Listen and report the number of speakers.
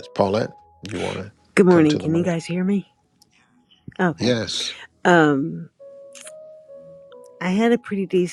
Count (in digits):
2